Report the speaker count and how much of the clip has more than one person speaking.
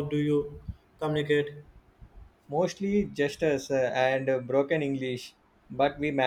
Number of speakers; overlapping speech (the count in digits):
2, no overlap